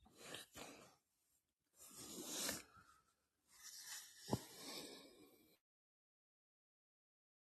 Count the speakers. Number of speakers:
zero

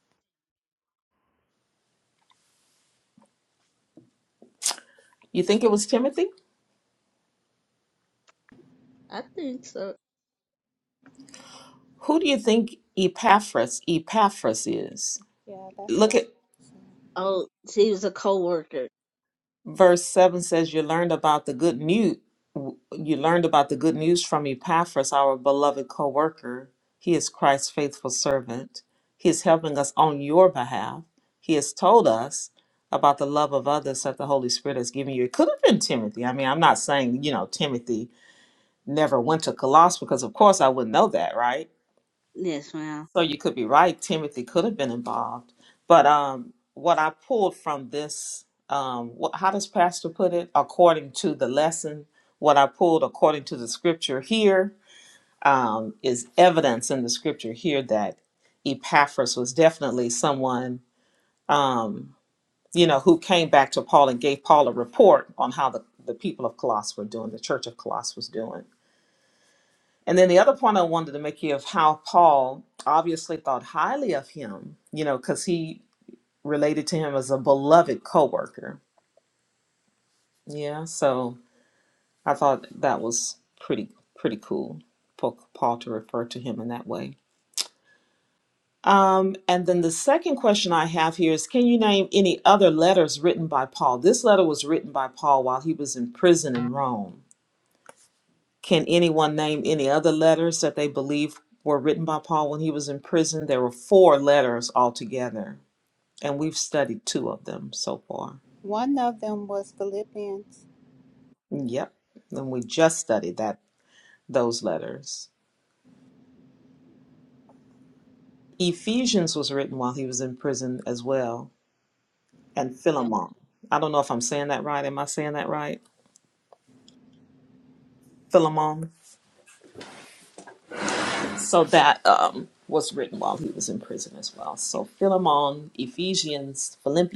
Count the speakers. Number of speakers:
three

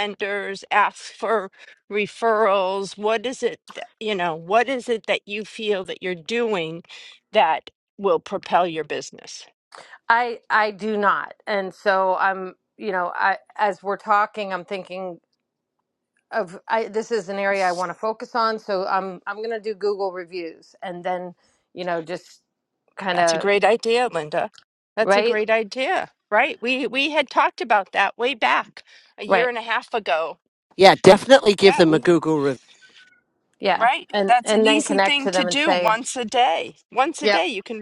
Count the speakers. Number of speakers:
three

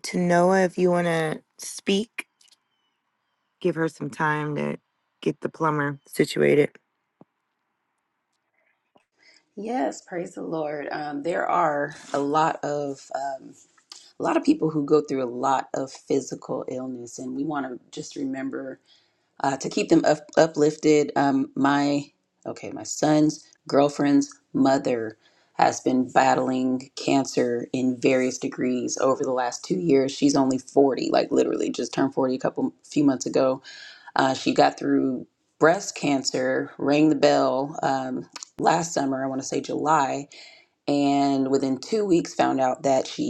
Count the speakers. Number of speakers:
two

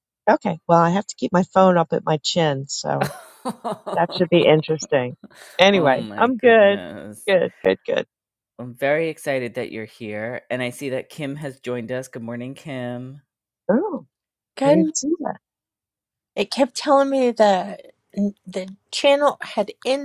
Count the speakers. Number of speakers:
three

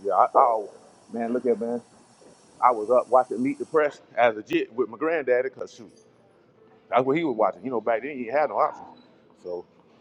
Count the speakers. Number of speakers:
one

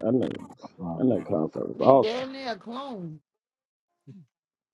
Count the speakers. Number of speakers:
two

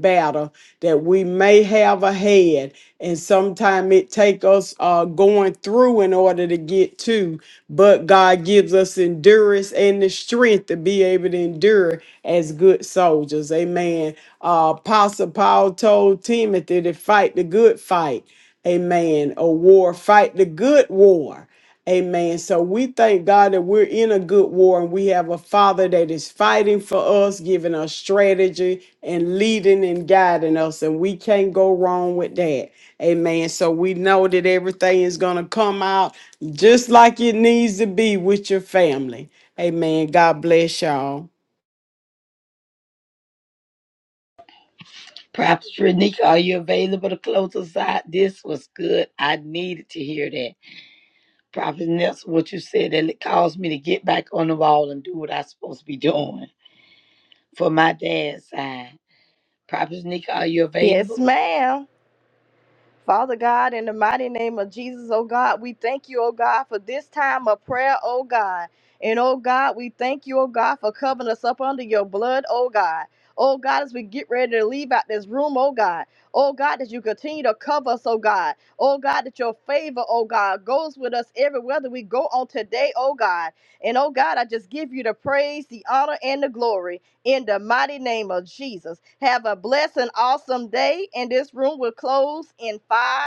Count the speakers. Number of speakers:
three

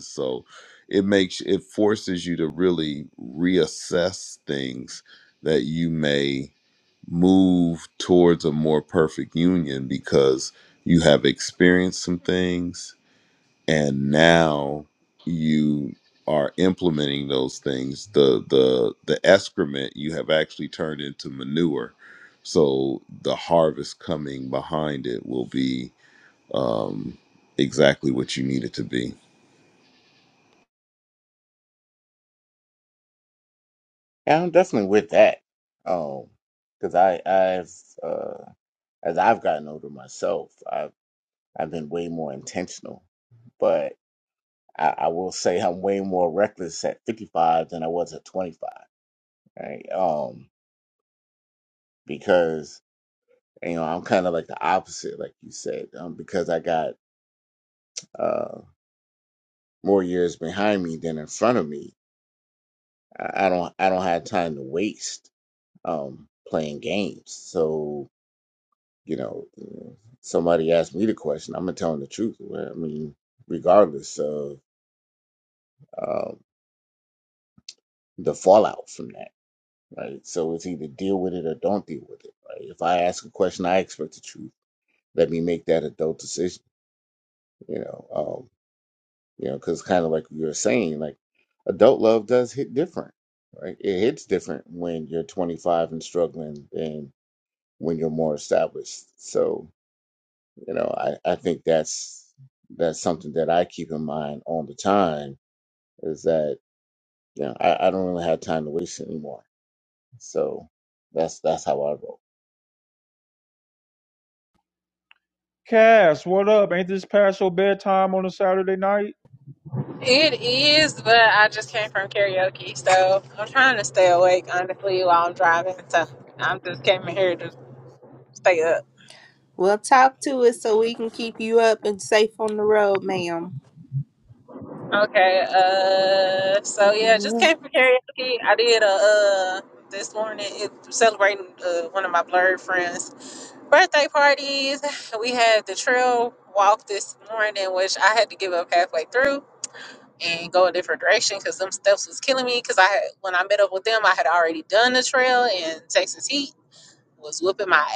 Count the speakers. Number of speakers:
five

